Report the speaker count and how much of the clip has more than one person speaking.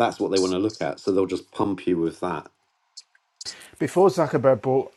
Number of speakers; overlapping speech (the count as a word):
two, no overlap